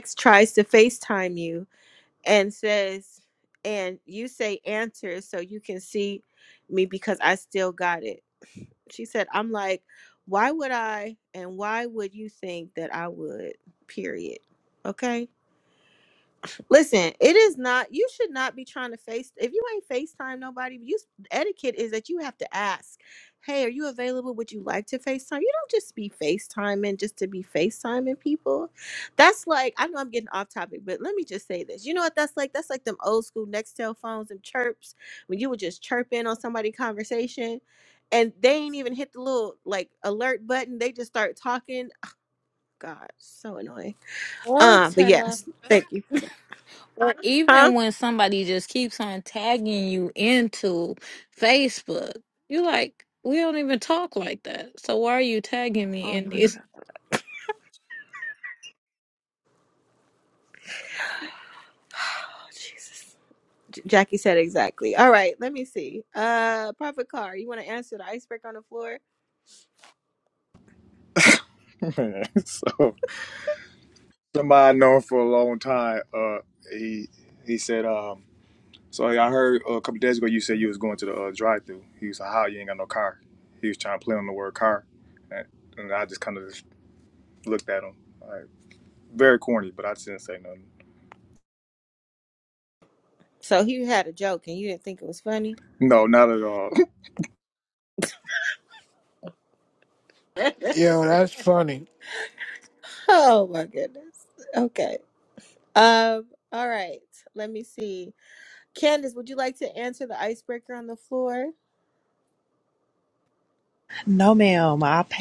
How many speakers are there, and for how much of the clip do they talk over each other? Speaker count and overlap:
5, about 1%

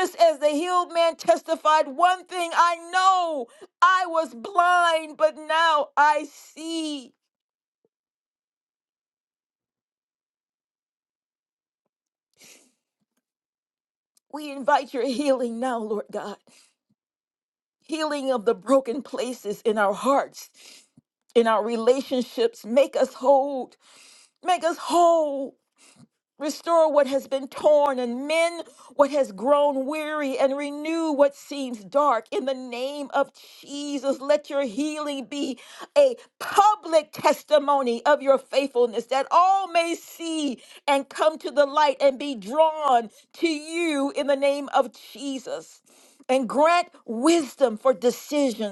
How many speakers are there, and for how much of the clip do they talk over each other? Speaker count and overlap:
1, no overlap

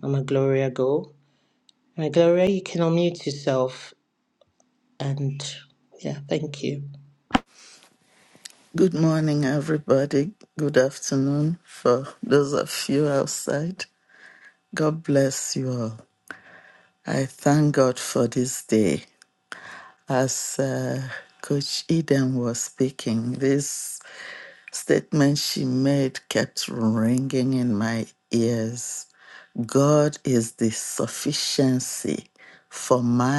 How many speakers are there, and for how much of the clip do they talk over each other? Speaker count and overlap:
2, no overlap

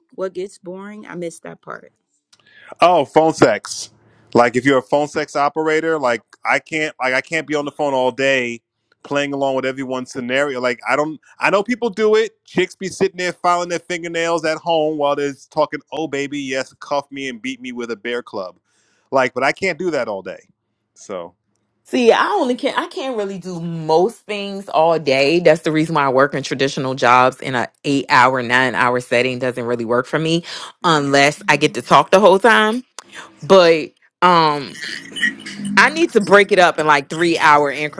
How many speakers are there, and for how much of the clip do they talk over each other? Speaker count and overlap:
3, no overlap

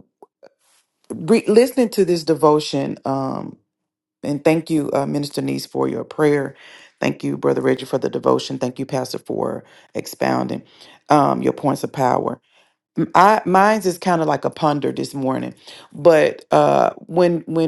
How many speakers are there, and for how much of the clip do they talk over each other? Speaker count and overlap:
1, no overlap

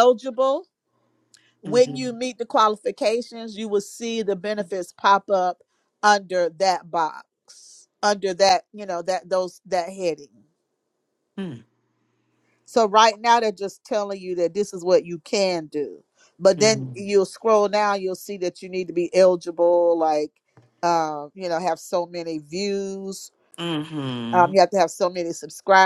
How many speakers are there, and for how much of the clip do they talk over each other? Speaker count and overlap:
2, about 4%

